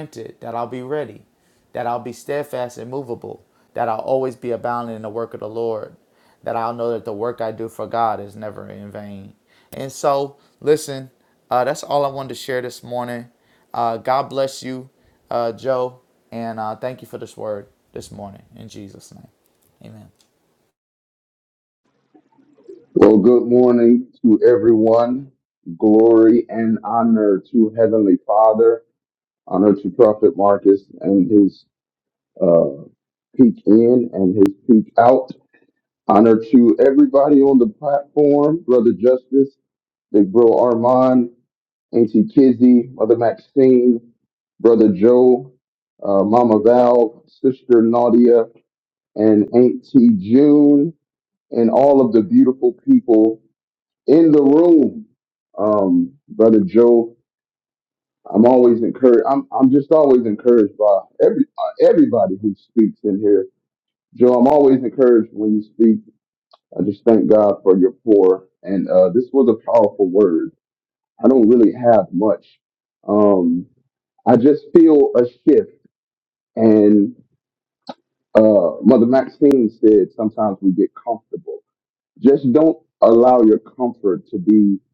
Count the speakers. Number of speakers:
2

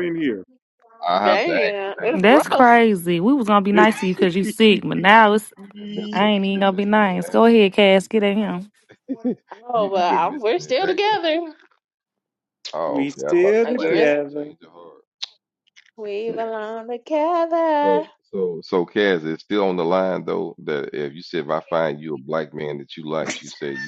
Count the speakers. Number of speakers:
4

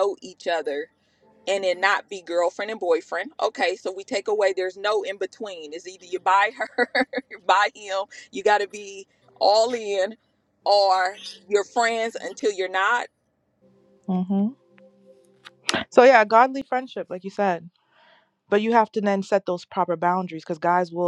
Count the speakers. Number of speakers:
2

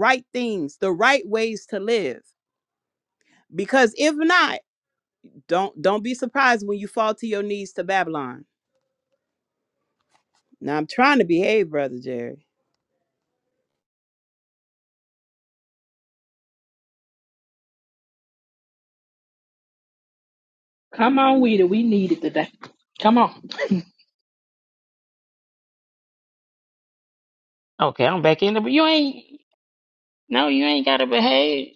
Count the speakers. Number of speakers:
3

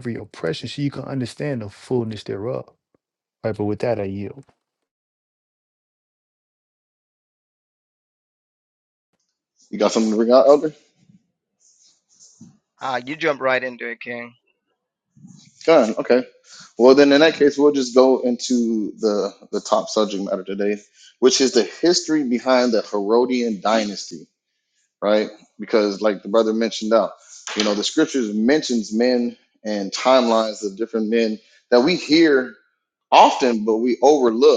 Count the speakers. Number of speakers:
3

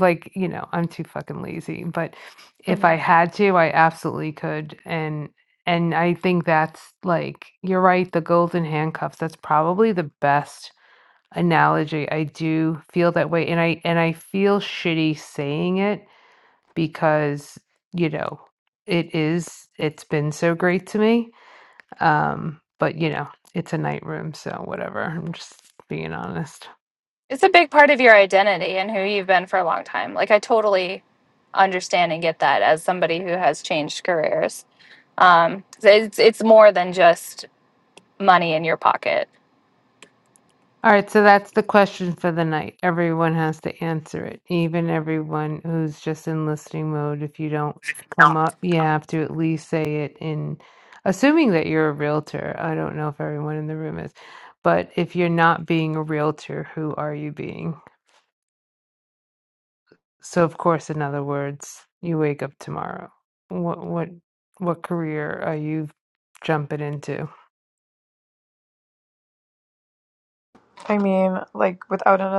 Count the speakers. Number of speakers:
3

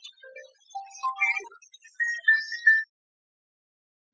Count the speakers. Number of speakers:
0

